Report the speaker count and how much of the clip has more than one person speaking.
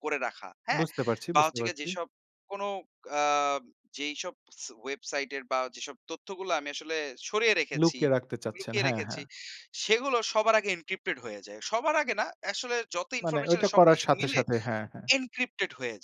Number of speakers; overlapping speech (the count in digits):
2, about 18%